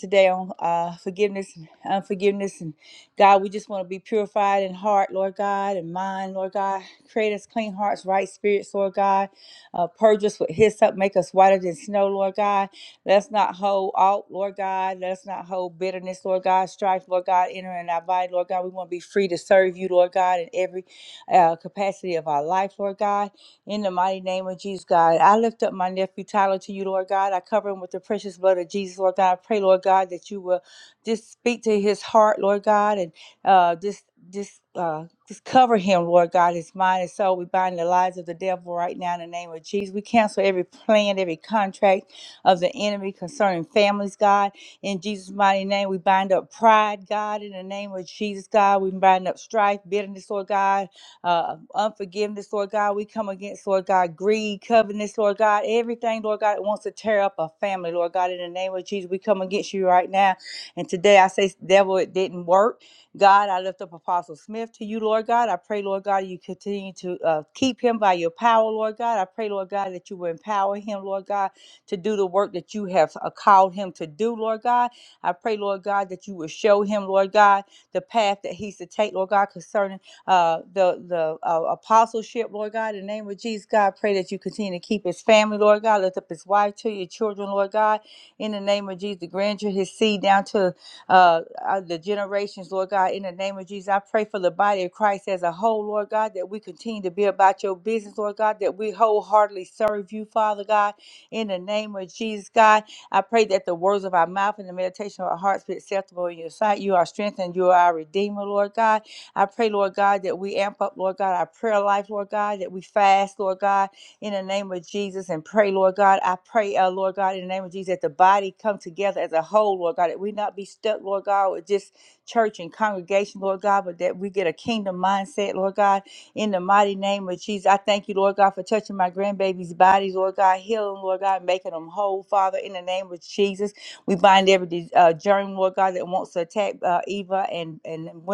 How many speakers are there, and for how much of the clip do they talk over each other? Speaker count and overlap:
1, no overlap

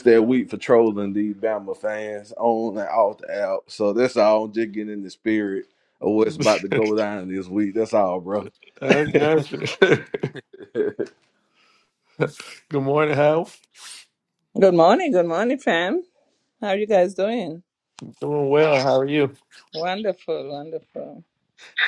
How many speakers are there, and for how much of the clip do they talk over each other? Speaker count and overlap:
3, no overlap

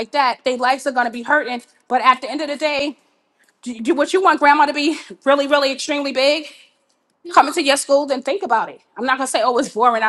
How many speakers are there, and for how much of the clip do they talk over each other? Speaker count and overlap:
1, no overlap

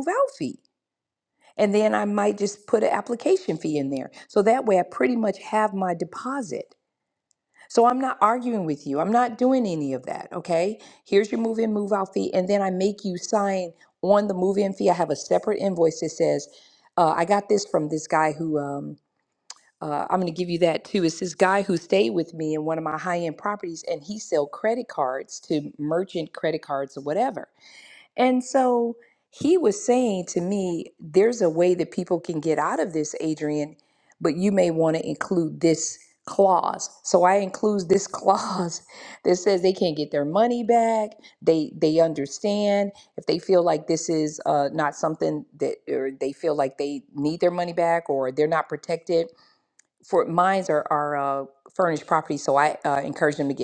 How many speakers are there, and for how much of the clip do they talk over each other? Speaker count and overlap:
1, no overlap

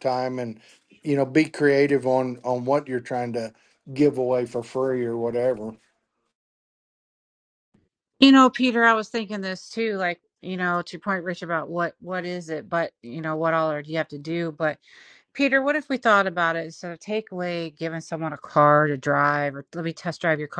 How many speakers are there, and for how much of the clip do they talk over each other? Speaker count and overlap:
2, no overlap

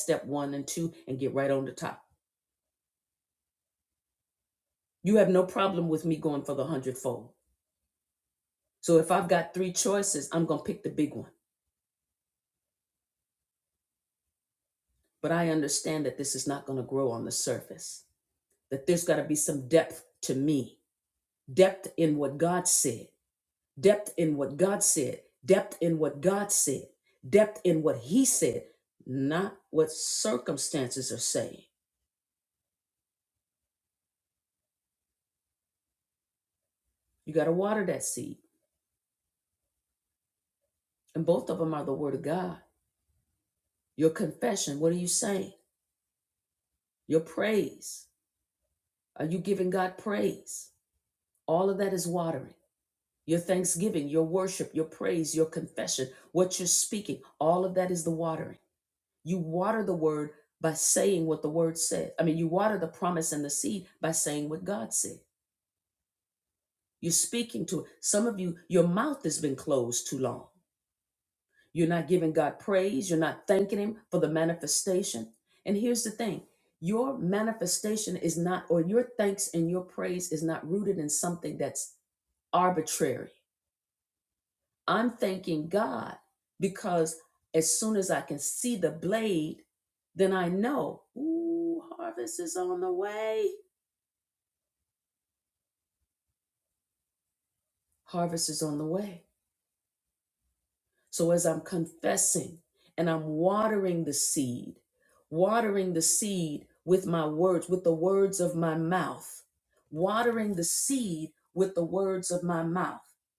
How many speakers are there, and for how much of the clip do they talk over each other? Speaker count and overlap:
1, no overlap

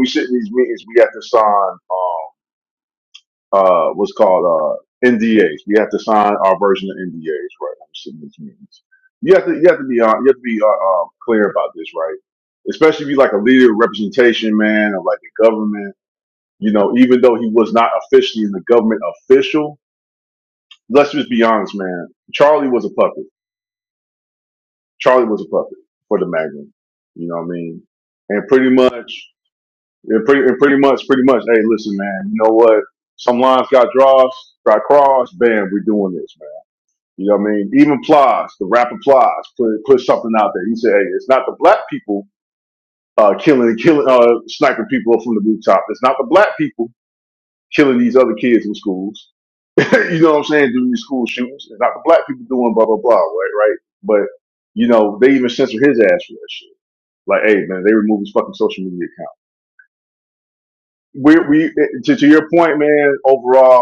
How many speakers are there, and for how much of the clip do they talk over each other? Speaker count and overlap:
1, no overlap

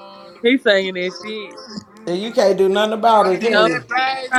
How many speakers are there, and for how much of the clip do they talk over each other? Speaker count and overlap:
3, about 15%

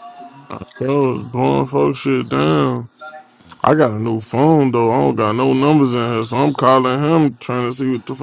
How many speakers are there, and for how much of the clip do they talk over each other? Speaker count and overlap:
1, no overlap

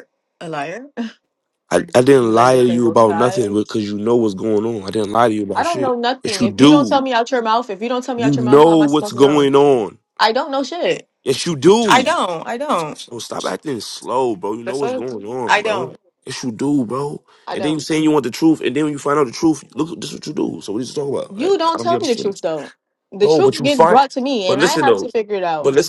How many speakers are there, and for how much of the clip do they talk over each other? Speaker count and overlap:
2, about 29%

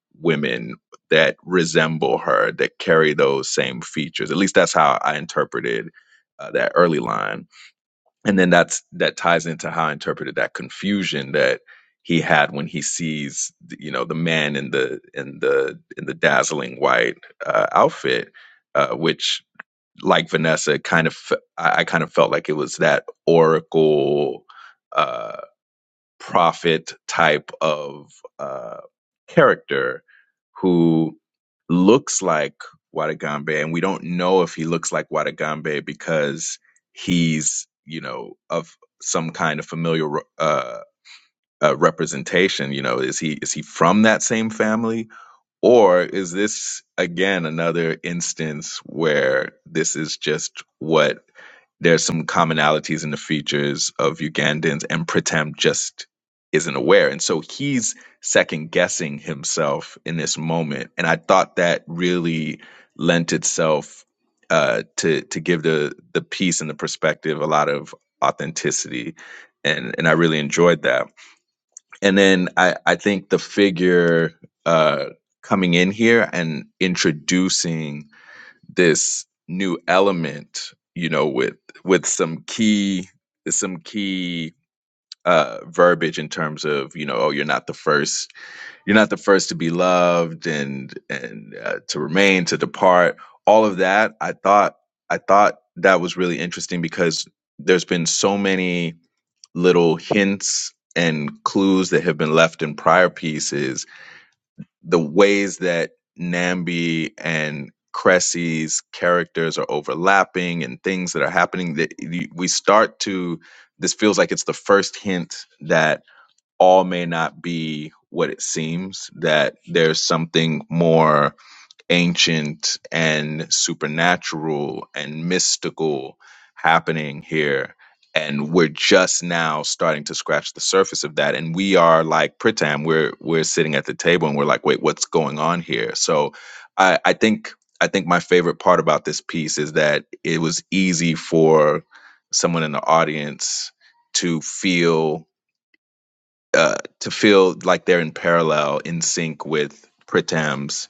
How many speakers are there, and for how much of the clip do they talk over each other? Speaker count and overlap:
1, no overlap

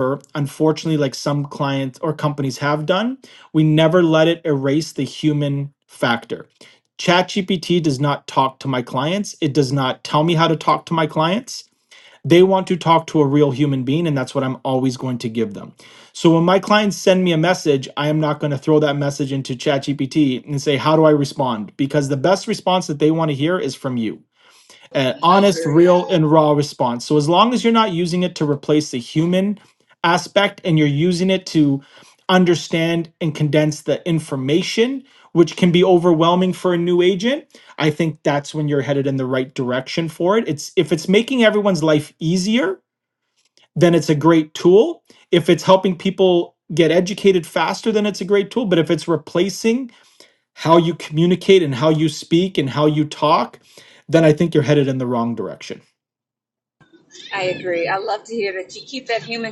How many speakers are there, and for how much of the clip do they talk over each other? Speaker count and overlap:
2, about 1%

